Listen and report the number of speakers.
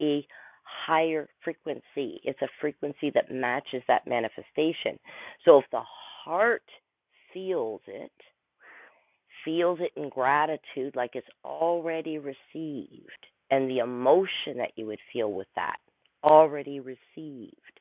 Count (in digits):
1